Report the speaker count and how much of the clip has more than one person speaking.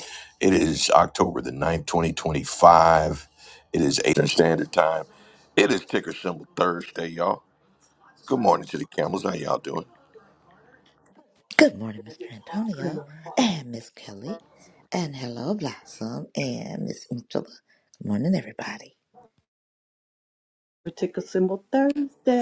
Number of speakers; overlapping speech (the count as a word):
three, about 1%